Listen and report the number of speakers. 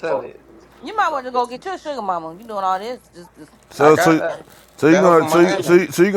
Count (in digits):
3